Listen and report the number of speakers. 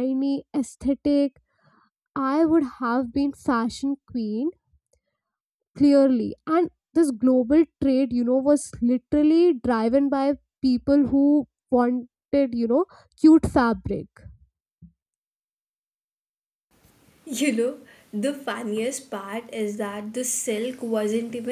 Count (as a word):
two